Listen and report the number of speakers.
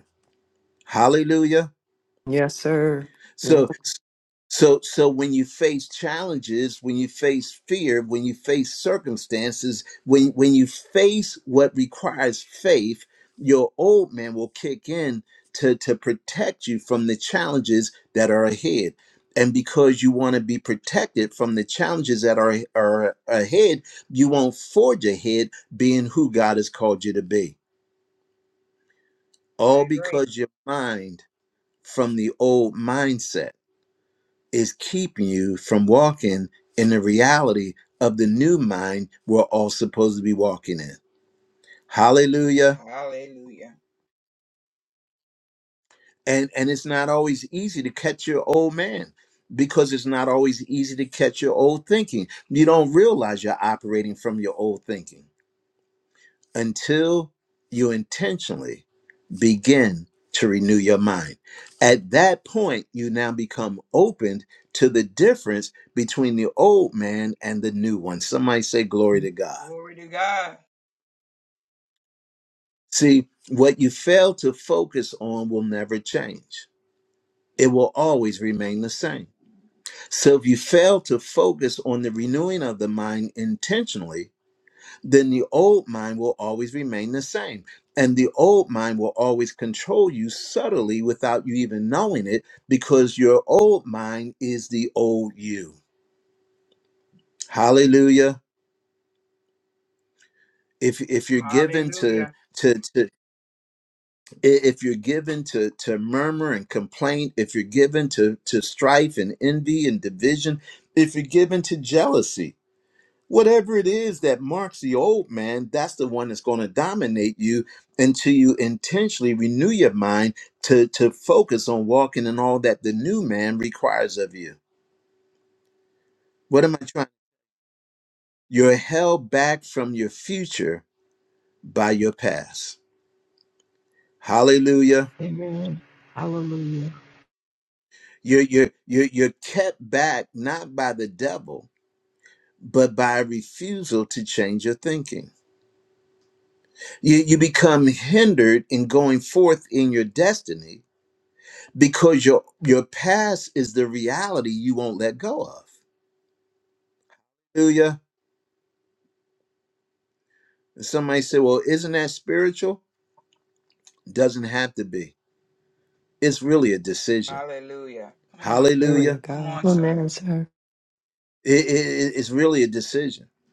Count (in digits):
4